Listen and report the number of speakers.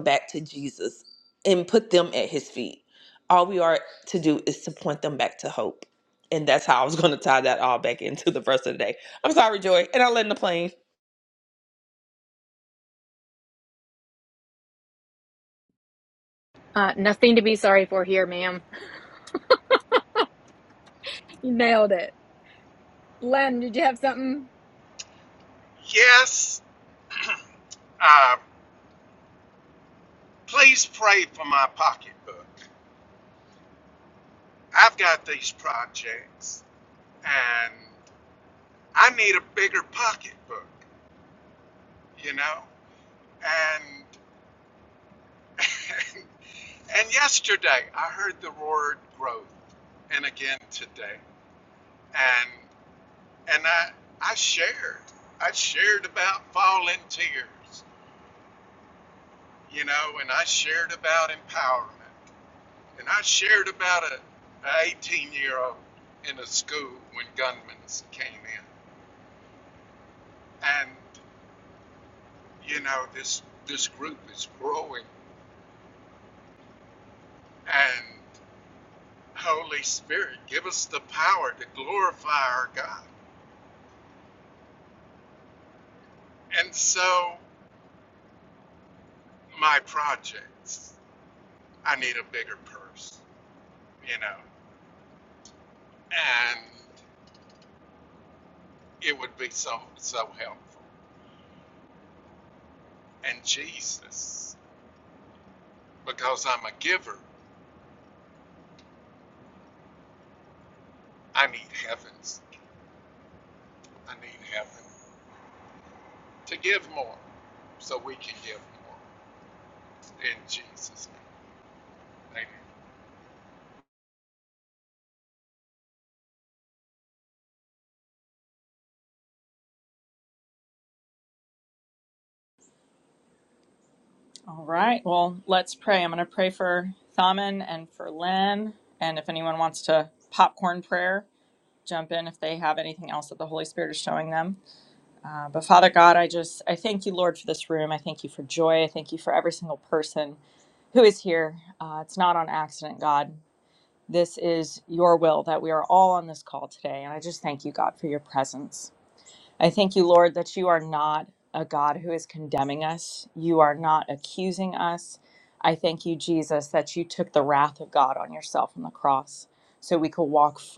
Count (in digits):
4